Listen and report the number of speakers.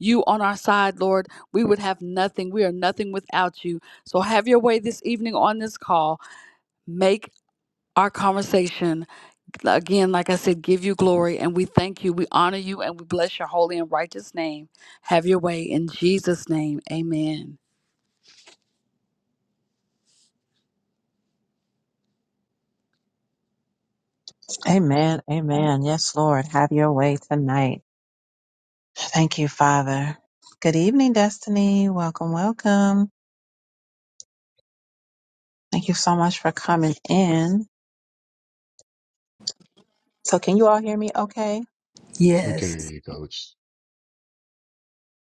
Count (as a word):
three